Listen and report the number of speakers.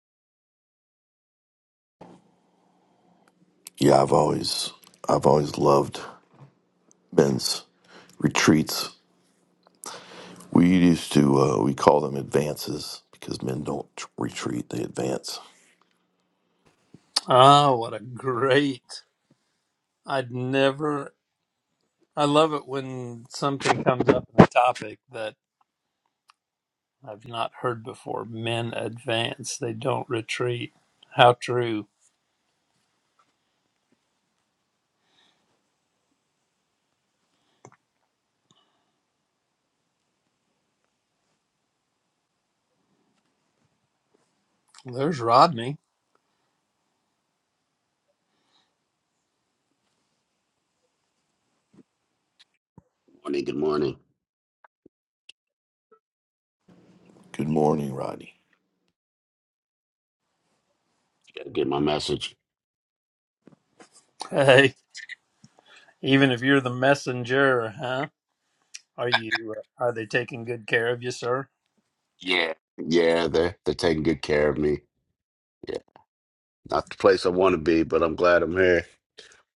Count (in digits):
3